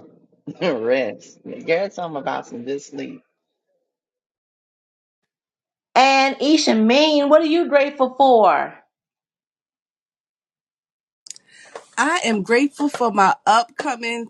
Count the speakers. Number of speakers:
3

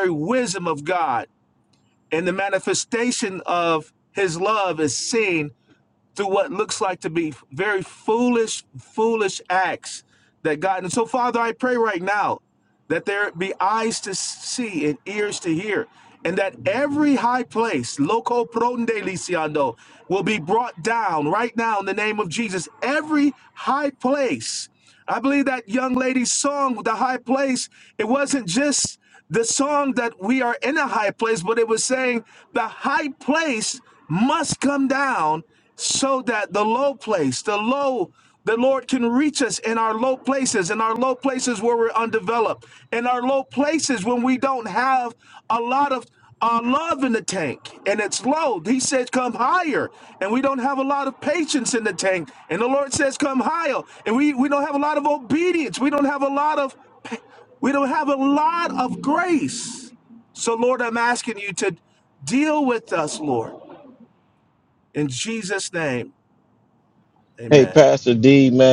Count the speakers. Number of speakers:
2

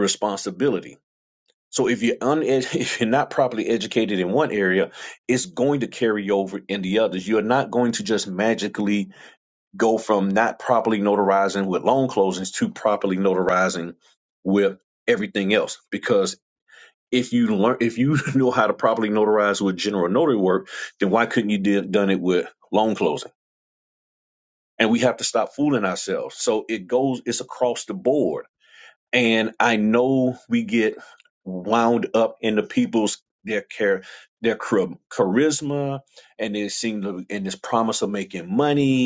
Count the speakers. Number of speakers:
1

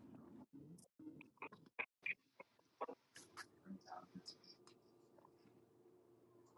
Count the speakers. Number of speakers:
0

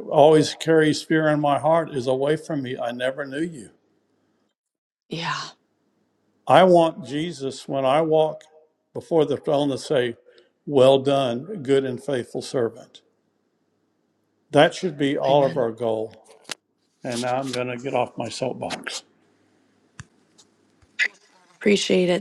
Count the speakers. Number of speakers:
2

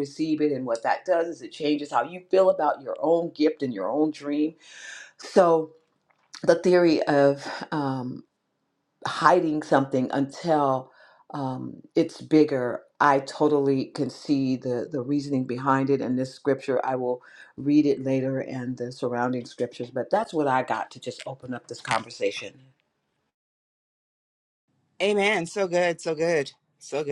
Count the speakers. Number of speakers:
2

